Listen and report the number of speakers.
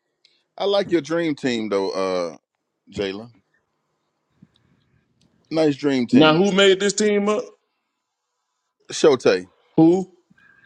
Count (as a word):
two